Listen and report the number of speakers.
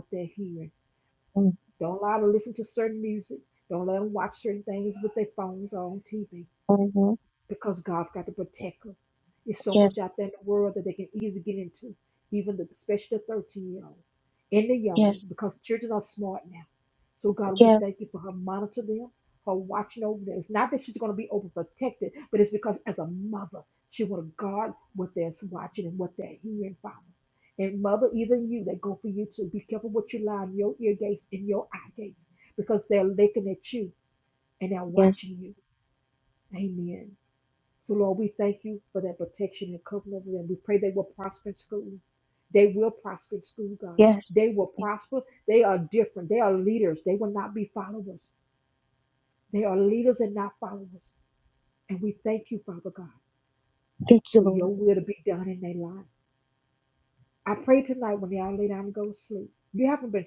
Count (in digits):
2